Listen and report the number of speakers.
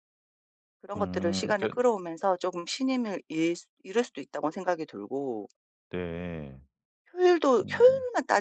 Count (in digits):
2